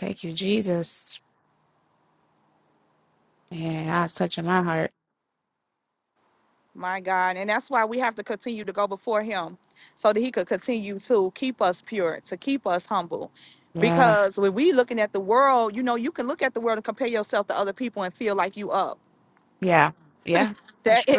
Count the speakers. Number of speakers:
two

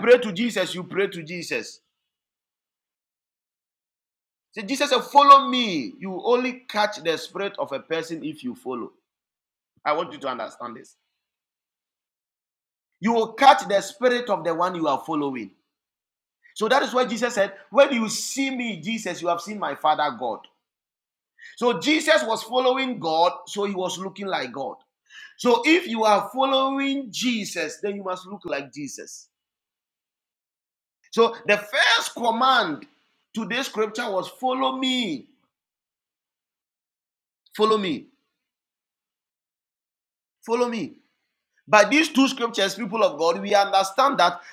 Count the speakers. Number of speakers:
one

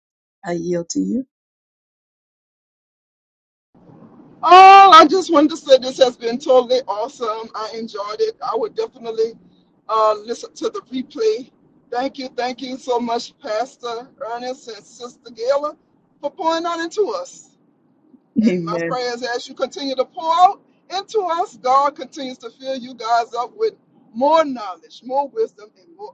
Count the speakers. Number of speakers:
two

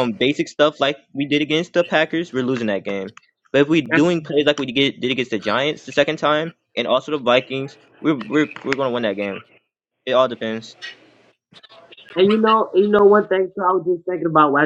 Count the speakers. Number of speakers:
two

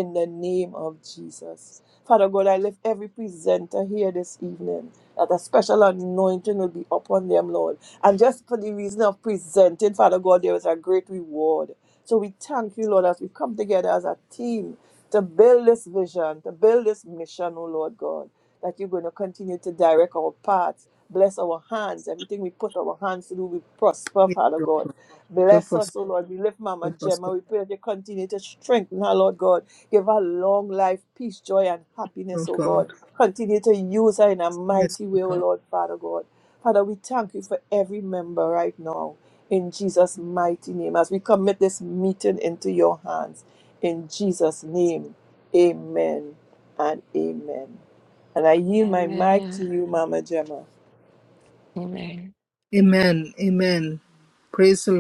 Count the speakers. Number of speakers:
three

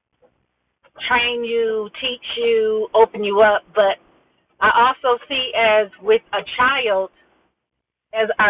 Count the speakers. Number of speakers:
one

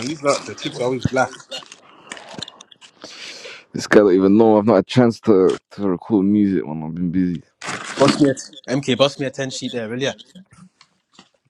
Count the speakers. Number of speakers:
three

